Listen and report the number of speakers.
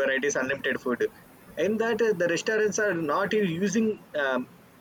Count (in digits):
1